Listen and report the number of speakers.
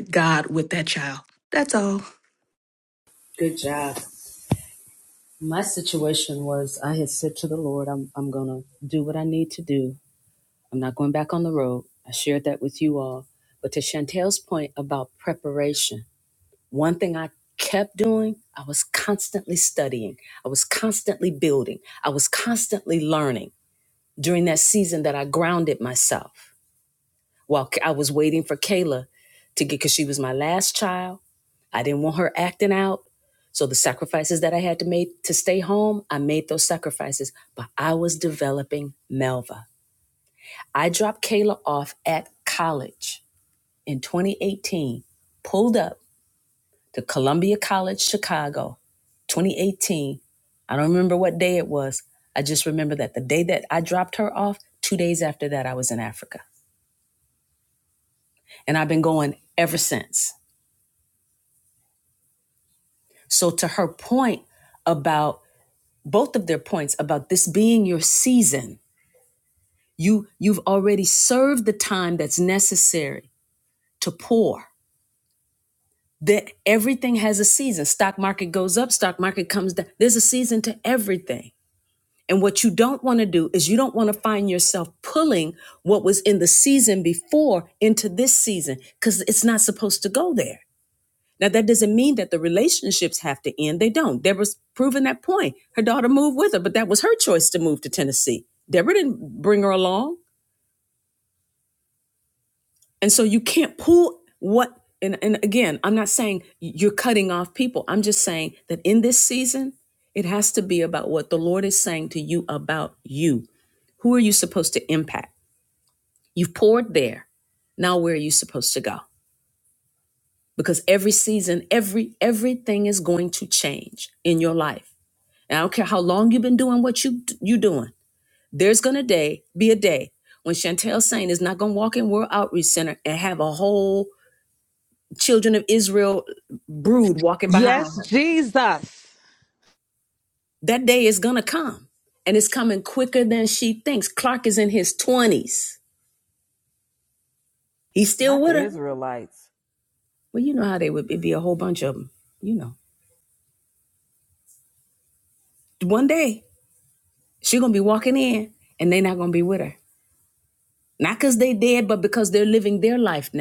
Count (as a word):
four